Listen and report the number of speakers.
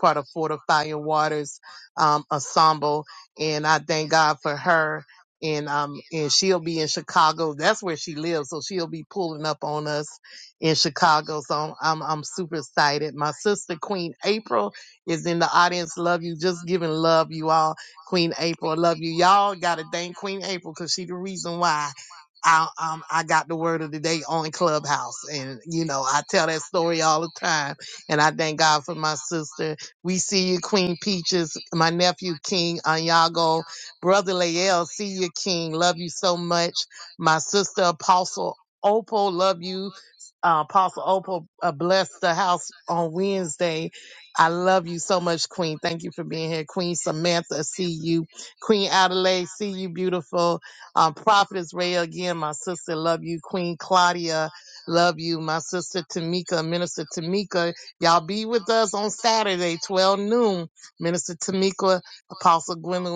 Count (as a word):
one